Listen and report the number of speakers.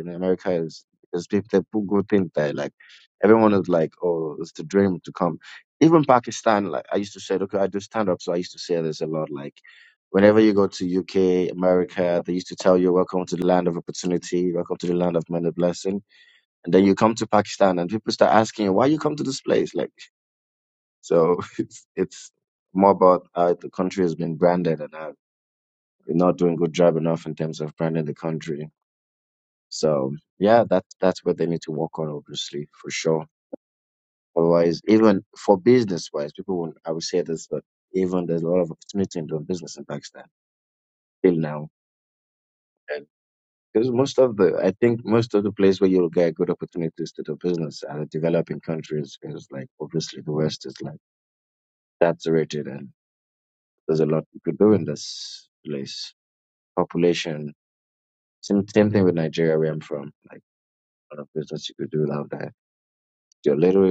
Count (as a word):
one